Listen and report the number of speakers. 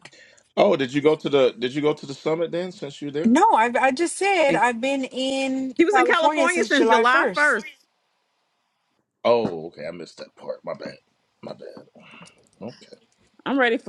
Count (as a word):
three